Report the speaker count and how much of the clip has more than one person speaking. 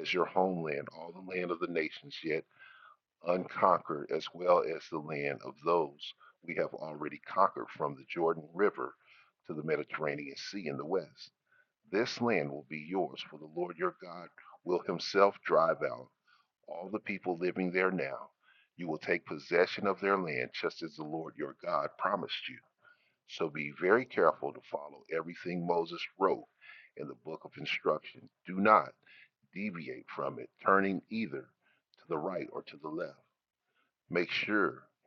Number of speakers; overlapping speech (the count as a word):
one, no overlap